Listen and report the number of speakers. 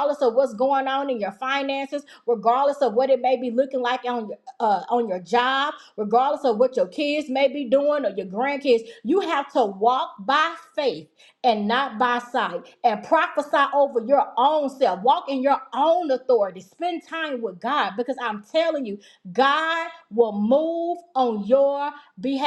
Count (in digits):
1